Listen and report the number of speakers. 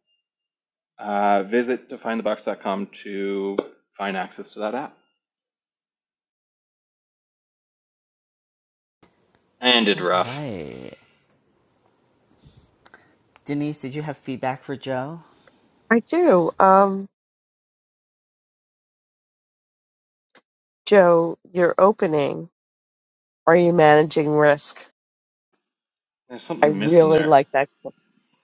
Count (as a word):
three